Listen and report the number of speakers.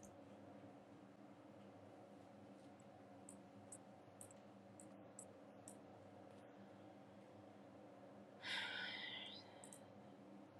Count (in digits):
0